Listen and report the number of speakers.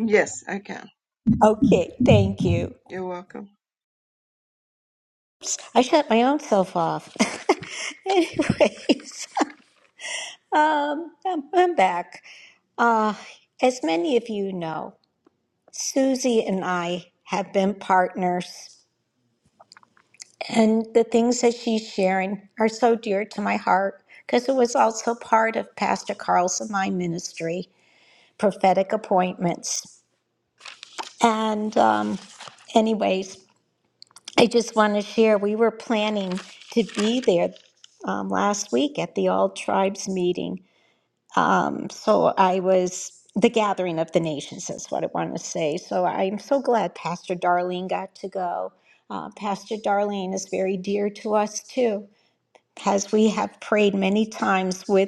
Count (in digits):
2